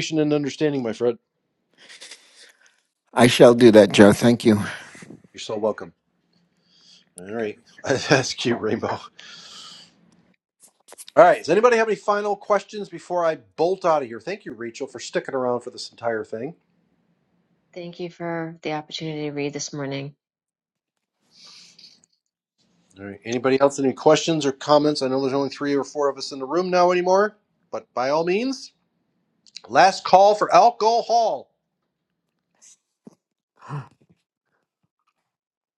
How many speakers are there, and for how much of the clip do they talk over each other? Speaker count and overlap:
3, no overlap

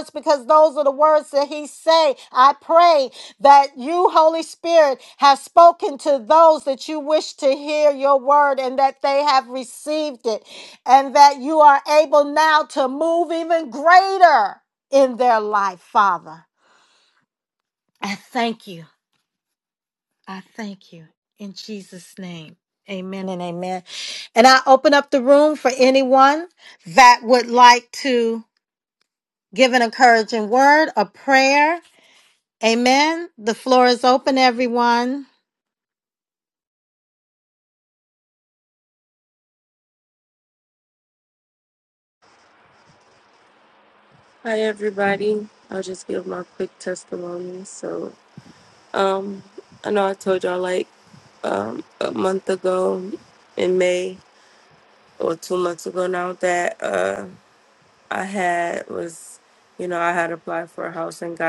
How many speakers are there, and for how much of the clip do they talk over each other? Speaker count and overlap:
2, no overlap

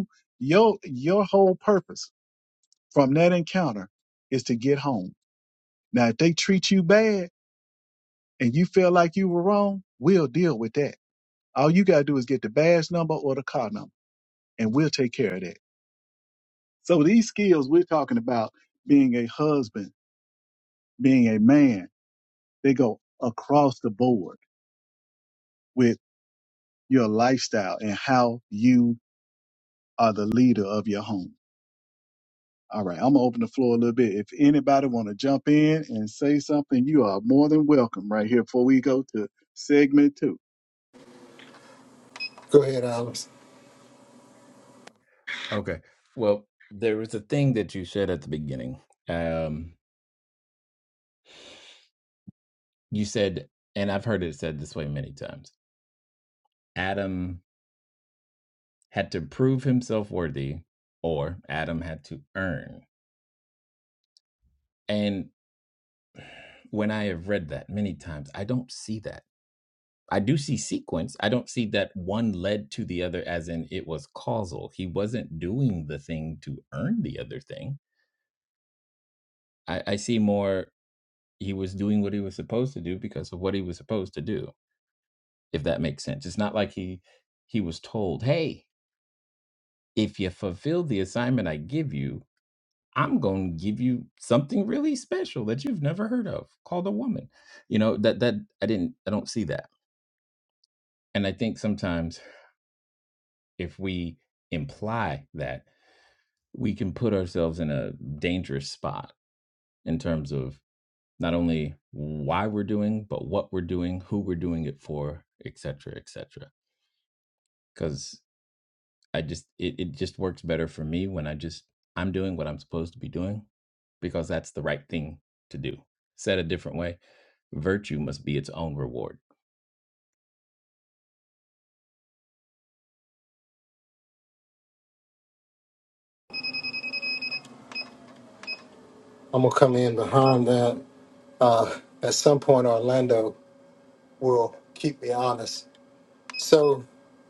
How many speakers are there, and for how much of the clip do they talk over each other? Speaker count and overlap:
3, no overlap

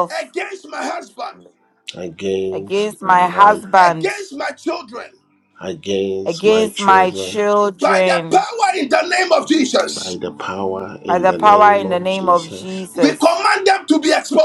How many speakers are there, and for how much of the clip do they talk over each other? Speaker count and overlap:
3, about 37%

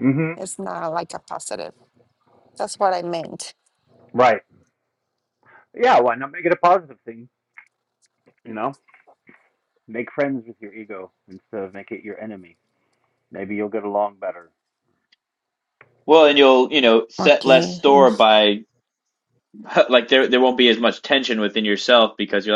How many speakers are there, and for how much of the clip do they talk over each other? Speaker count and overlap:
3, about 4%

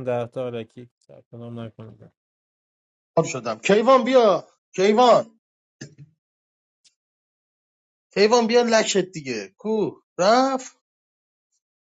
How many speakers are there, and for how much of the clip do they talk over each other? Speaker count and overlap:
2, no overlap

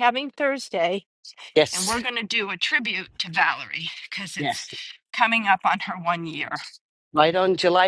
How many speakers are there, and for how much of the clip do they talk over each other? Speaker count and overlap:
2, about 7%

